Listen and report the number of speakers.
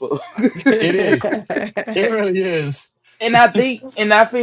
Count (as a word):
two